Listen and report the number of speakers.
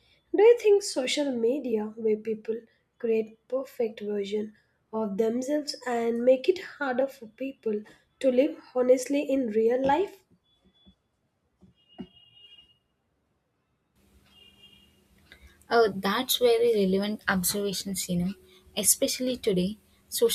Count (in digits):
2